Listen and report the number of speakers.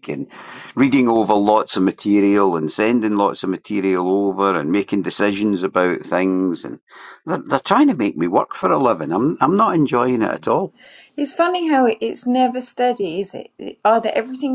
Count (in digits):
2